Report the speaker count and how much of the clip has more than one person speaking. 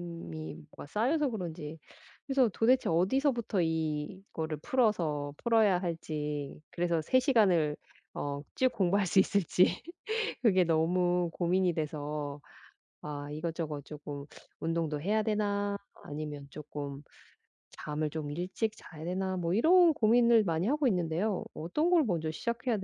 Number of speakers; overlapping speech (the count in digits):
1, no overlap